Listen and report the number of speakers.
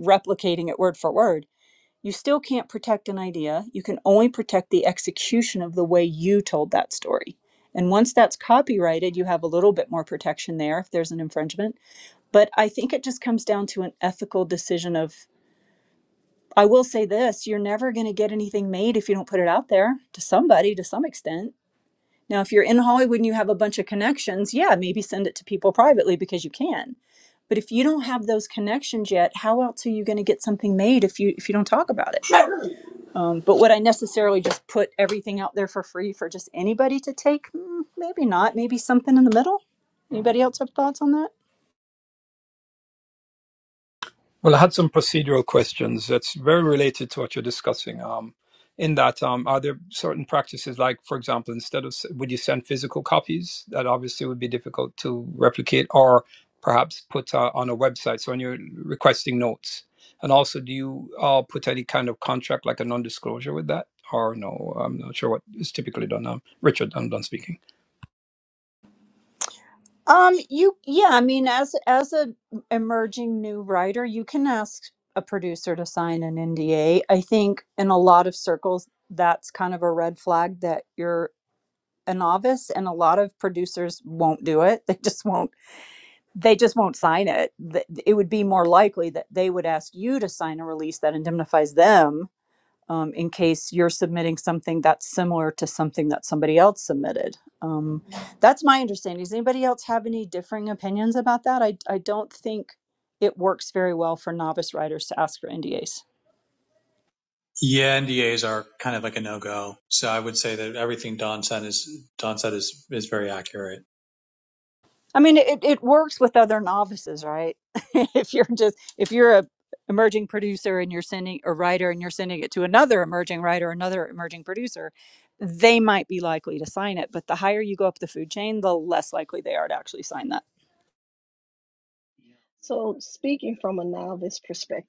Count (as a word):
four